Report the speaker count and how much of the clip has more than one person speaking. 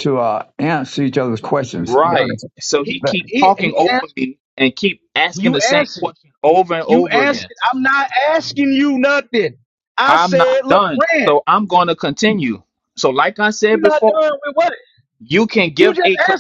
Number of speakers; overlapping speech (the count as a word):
three, about 30%